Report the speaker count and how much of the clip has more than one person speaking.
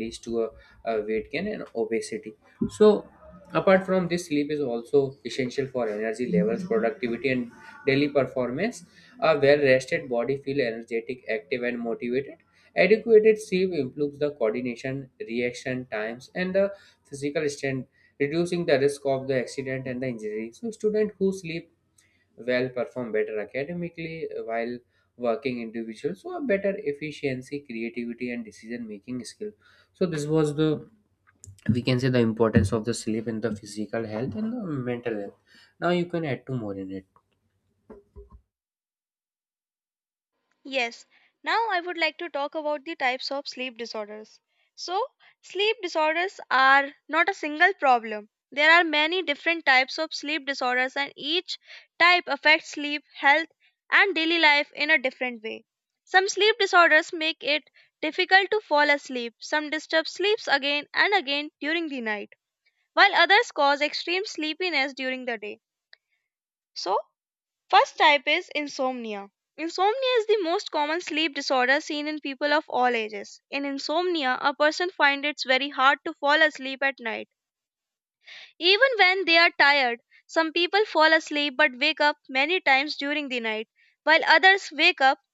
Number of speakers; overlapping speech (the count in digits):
2, no overlap